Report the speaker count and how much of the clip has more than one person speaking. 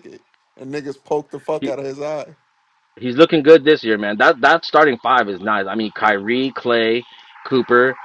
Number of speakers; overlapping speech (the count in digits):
2, no overlap